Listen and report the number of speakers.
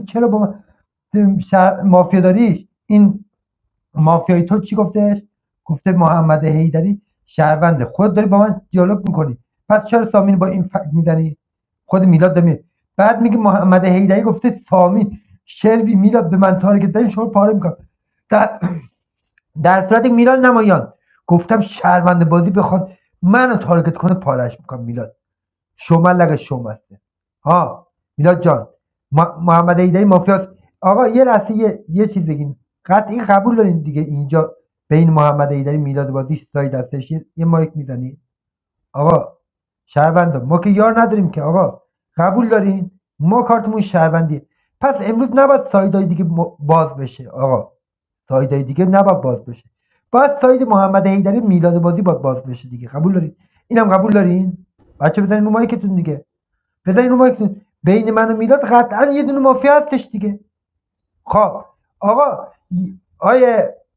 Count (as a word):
one